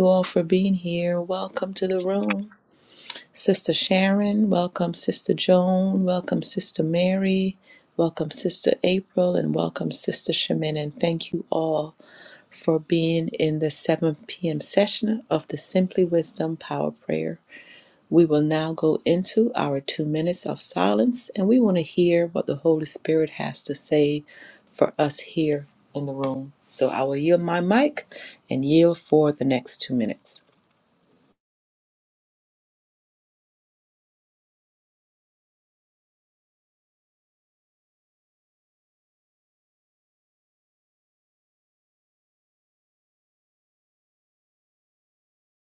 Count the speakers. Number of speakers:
one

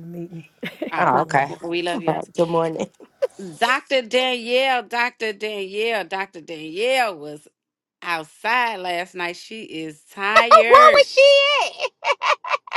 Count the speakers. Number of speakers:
four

